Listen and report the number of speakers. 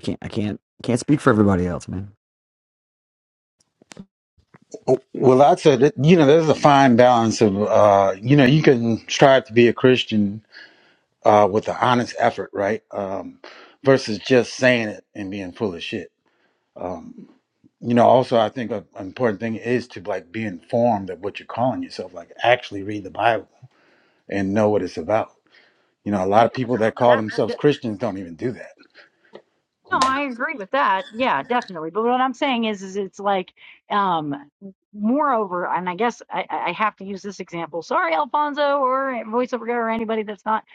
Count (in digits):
3